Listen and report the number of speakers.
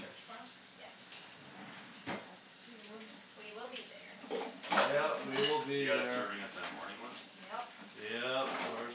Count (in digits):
4